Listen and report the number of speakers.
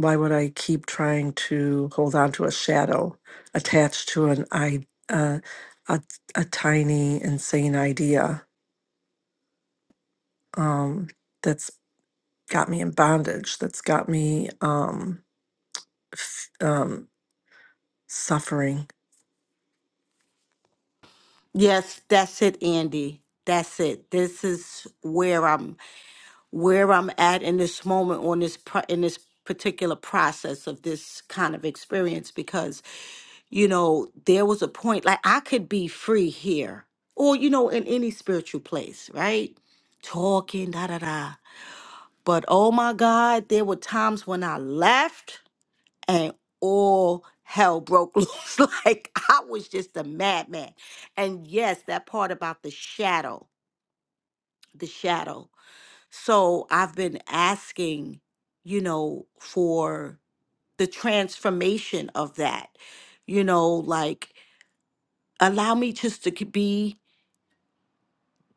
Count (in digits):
2